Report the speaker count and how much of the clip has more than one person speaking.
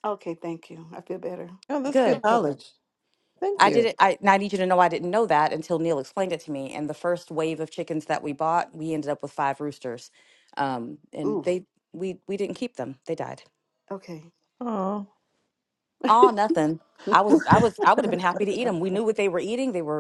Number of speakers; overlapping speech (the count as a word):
three, about 5%